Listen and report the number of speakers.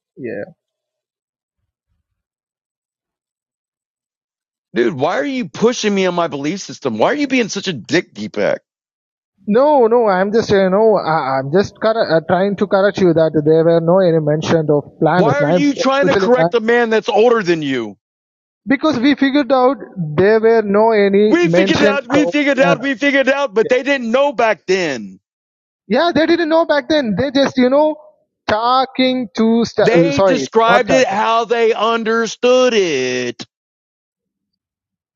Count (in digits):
2